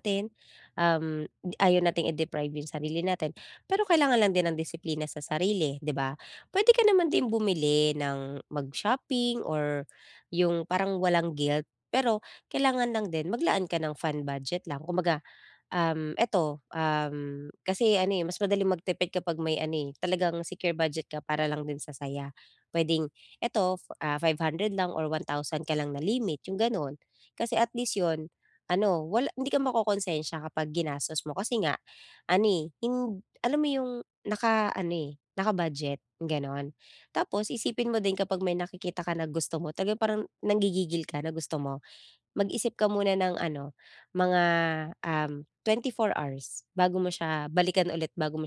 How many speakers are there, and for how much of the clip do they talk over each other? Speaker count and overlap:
1, no overlap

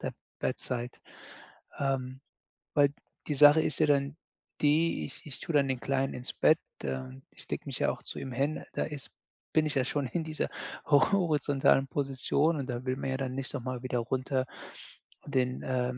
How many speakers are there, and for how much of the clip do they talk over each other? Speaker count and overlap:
1, no overlap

